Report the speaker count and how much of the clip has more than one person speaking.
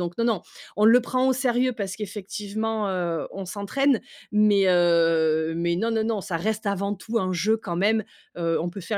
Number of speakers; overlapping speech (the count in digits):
1, no overlap